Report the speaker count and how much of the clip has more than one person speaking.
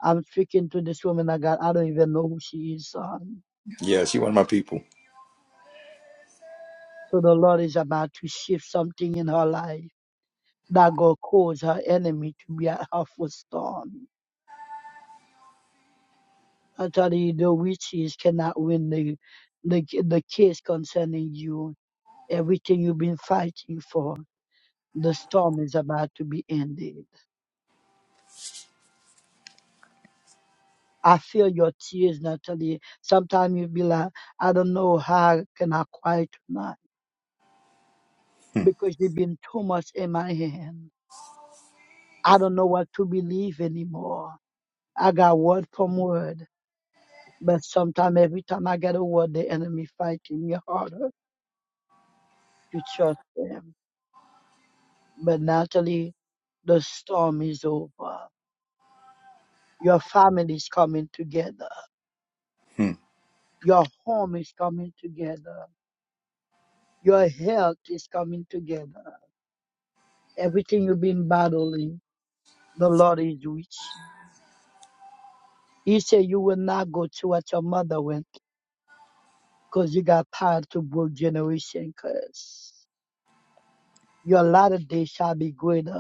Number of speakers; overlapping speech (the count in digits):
2, under 1%